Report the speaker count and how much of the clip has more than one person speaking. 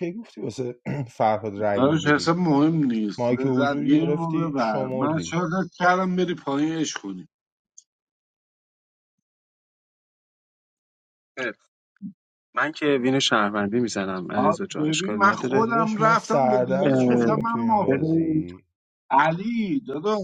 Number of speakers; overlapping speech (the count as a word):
three, about 33%